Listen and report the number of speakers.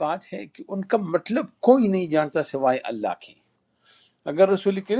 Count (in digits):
1